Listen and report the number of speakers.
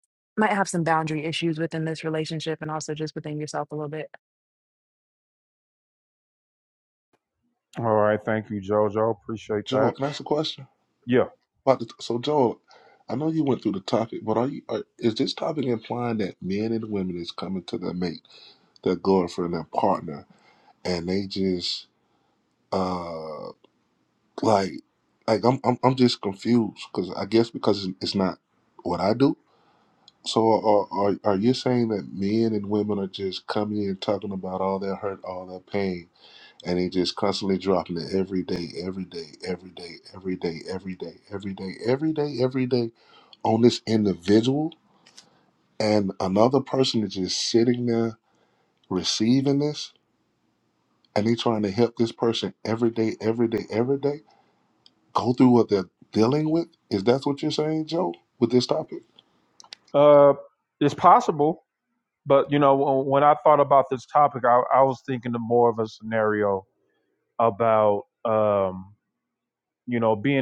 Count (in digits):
3